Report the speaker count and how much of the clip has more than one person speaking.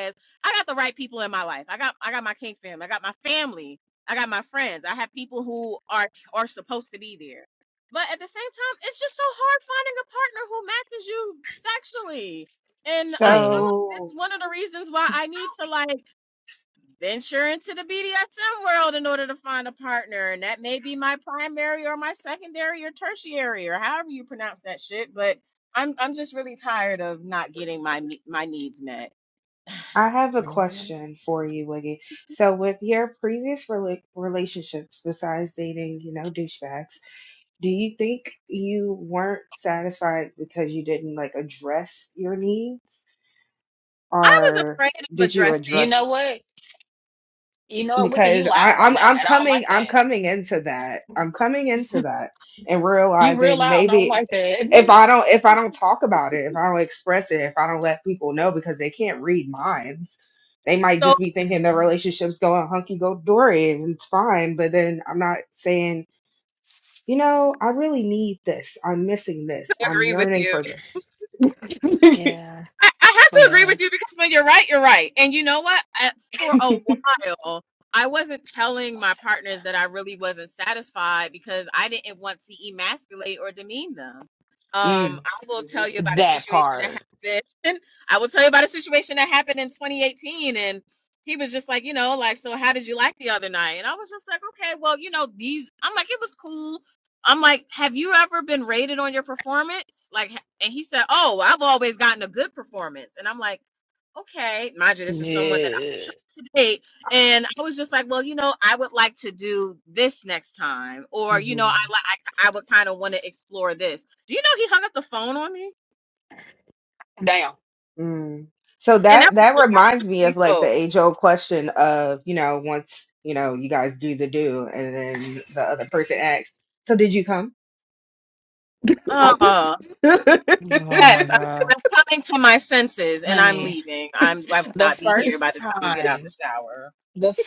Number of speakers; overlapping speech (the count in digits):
3, about 11%